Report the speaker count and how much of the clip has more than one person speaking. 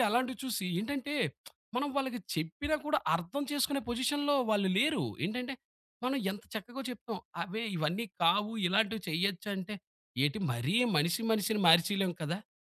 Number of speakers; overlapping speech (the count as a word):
one, no overlap